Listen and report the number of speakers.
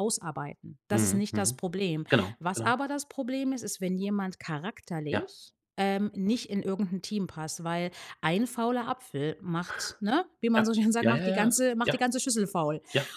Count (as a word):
two